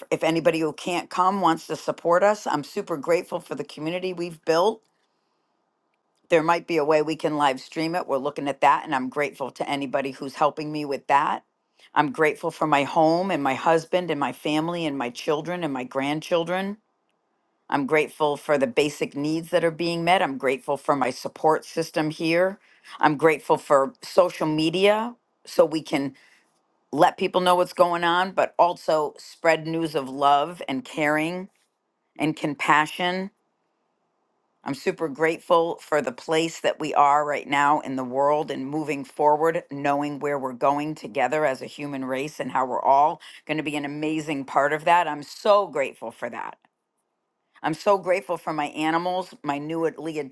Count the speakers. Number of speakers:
1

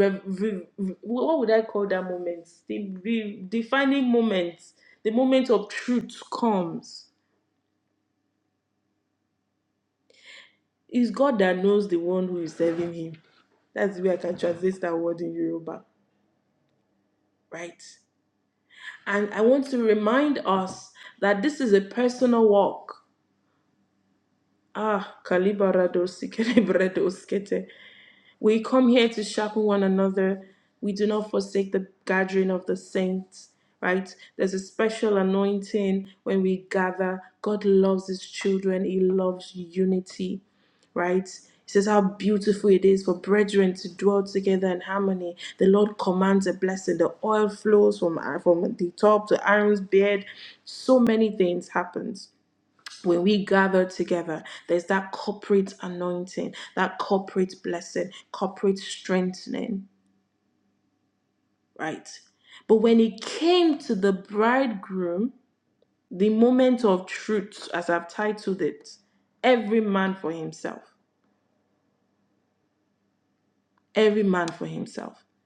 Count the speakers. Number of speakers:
1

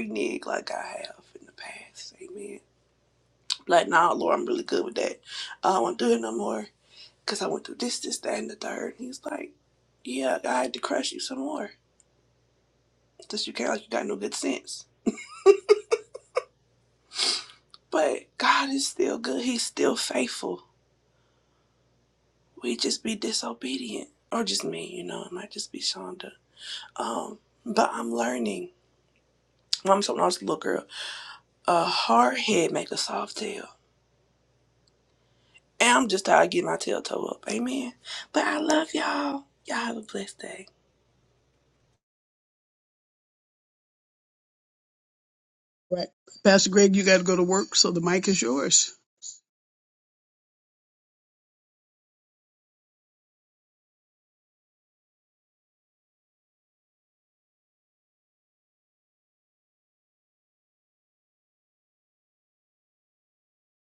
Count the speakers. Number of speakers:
2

